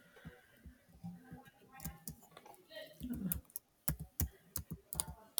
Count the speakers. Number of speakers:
zero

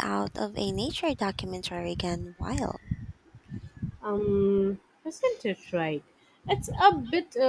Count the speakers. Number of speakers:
two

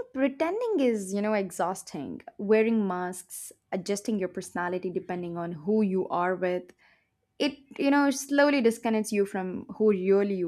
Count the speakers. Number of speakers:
one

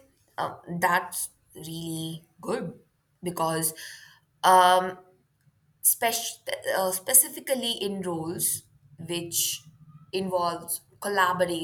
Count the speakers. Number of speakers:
one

